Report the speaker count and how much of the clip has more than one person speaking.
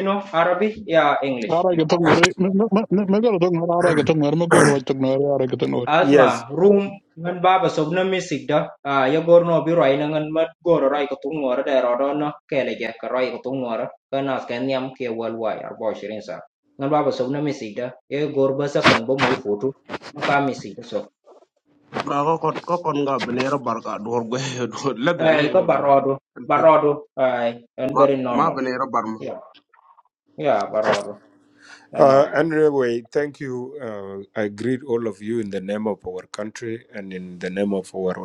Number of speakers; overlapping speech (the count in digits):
4, about 5%